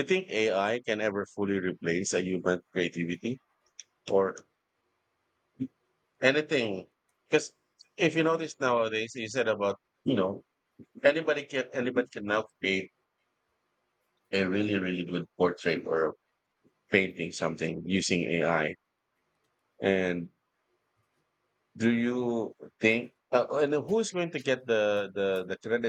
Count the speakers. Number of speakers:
1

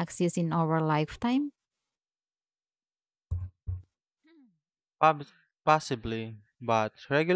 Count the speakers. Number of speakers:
2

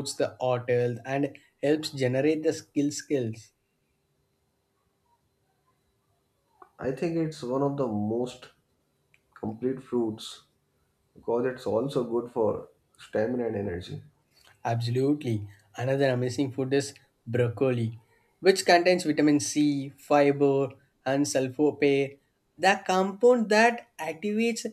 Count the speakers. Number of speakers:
2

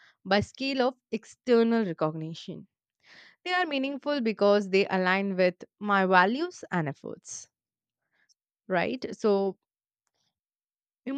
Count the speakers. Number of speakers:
1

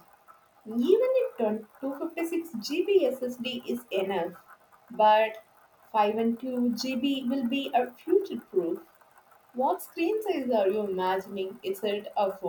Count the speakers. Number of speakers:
1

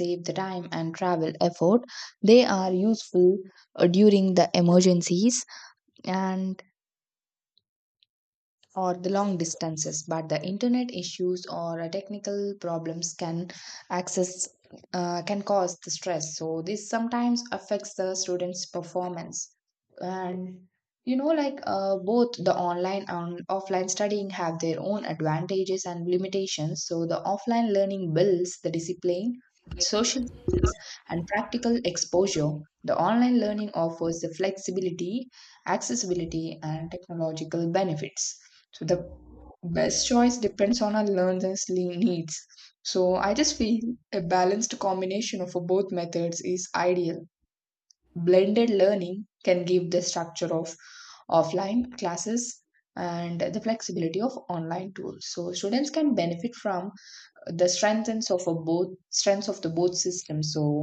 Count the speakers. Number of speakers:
1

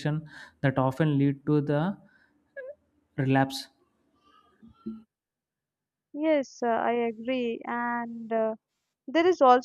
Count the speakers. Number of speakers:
2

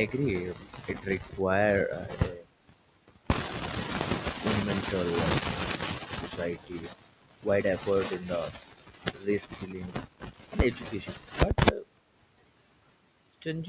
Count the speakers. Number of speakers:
1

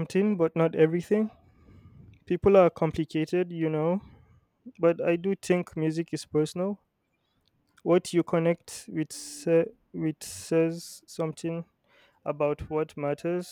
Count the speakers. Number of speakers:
1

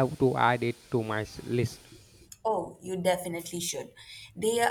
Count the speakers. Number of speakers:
2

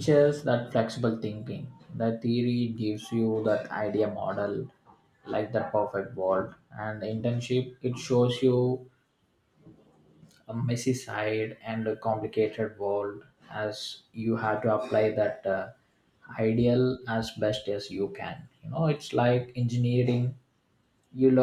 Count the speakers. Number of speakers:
1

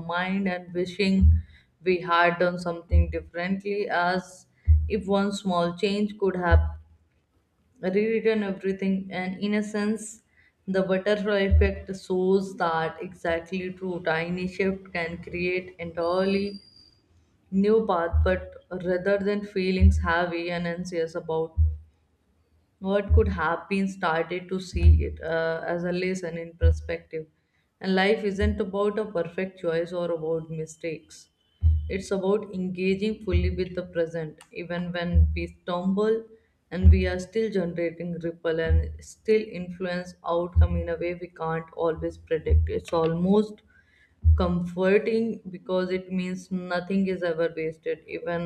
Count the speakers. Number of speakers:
1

